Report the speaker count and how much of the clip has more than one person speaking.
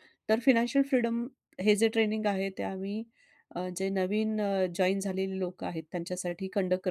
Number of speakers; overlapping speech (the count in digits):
1, no overlap